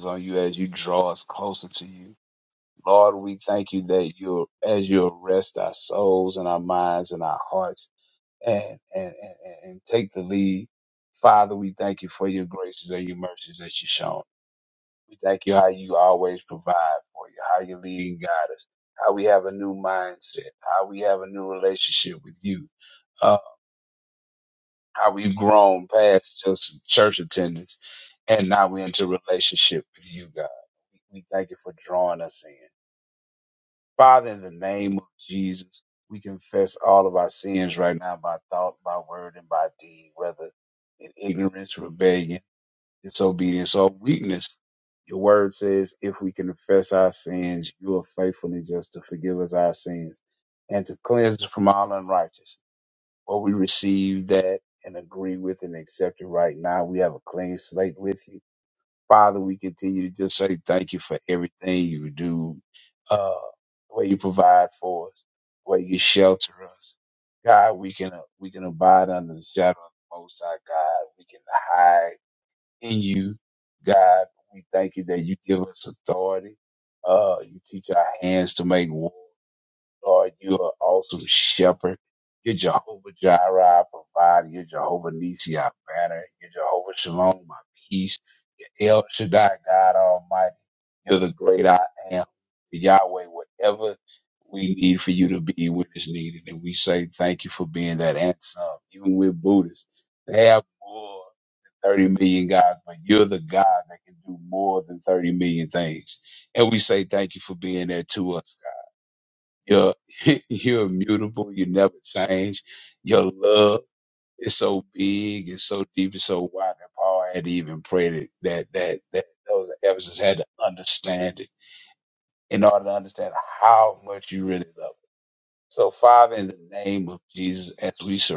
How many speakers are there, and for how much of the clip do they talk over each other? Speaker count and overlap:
1, no overlap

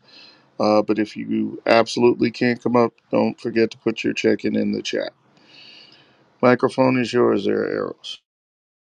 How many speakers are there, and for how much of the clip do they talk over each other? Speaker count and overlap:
1, no overlap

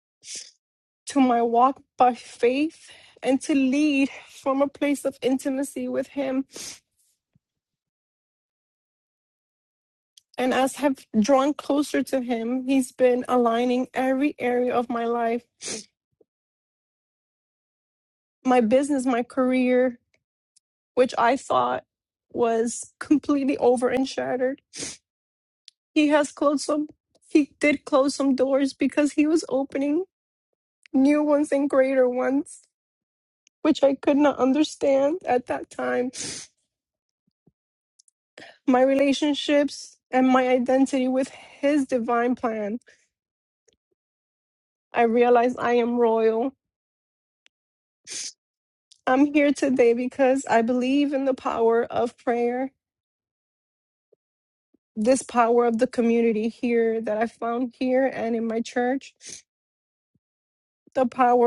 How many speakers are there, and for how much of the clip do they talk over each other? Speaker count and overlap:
1, no overlap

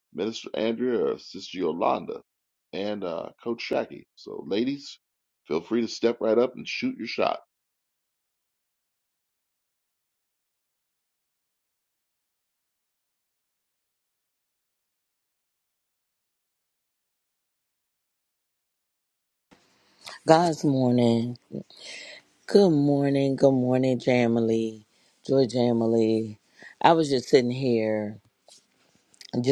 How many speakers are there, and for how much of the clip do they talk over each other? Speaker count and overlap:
2, no overlap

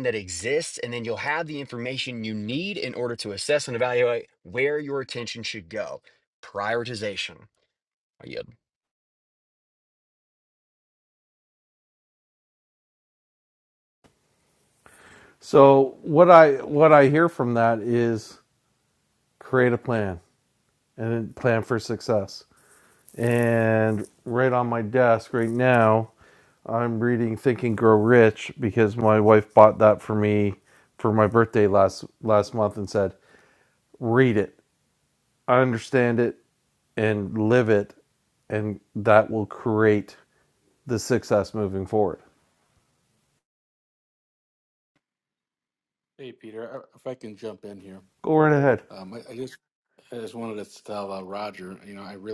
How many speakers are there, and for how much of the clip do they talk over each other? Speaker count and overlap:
3, no overlap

